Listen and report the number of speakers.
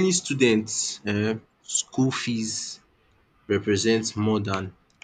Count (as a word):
one